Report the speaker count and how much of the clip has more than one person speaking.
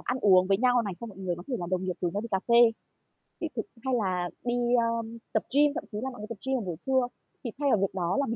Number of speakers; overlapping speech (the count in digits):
1, no overlap